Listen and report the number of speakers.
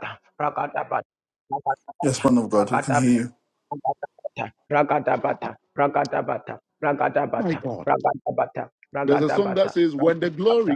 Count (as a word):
three